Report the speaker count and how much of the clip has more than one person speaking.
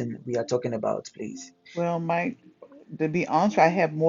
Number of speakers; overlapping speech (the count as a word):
two, no overlap